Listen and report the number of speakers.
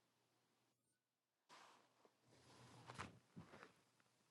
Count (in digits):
0